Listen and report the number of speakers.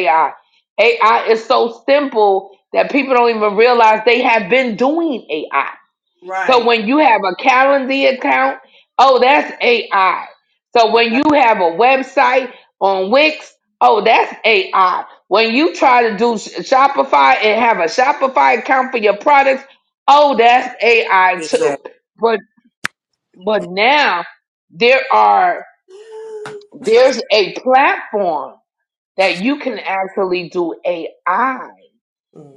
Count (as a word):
two